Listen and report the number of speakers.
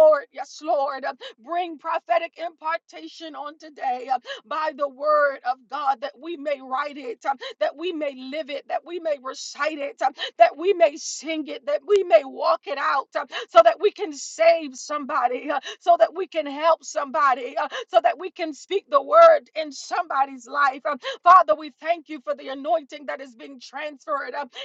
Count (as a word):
one